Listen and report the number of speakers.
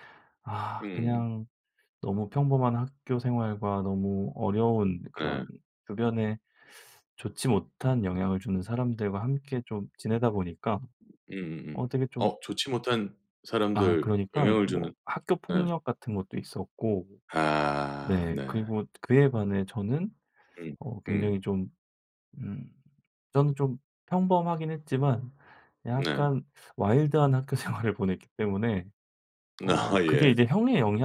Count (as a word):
two